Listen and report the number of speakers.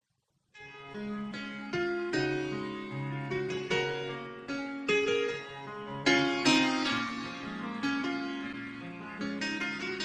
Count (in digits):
0